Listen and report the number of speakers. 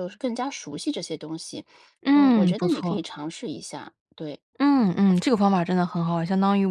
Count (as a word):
two